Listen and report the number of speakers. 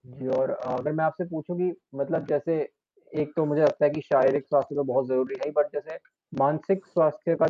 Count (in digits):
1